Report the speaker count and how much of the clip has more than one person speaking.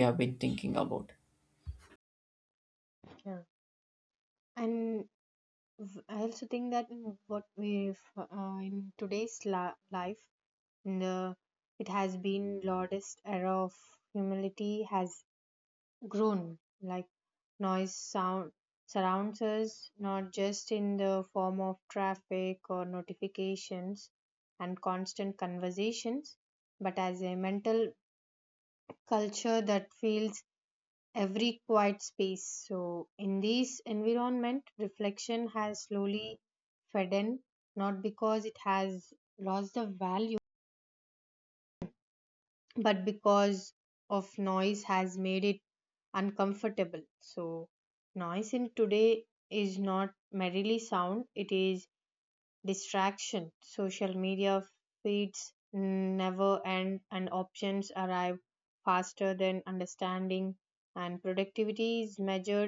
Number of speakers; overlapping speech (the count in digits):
2, no overlap